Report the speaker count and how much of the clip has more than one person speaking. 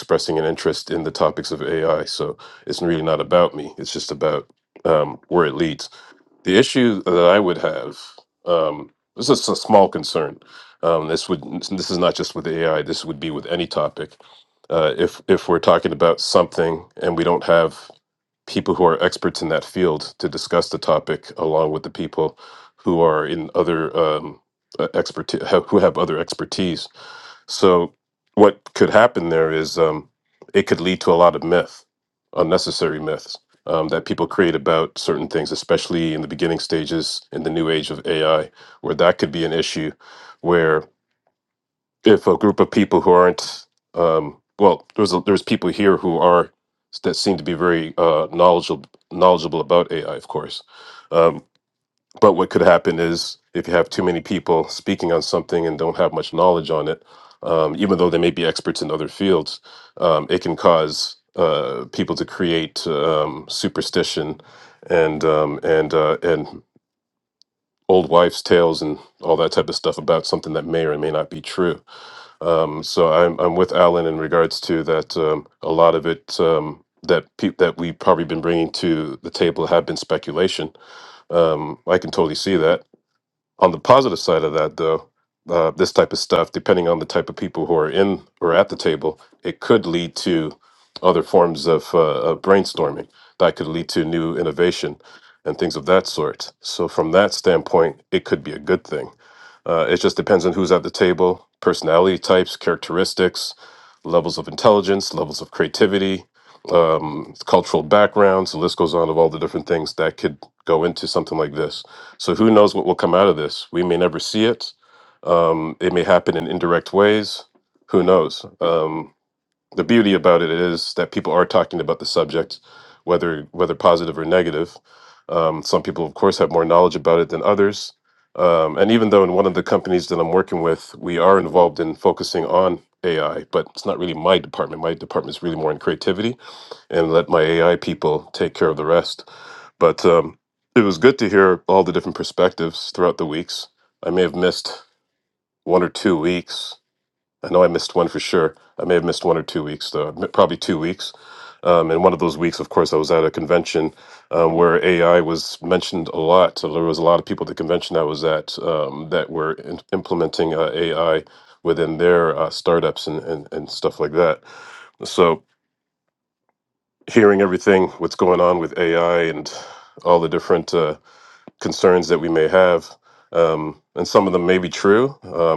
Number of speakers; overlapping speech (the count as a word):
one, no overlap